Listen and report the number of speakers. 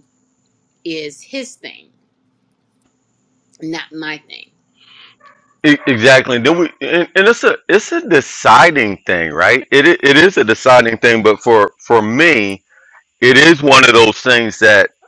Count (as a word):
two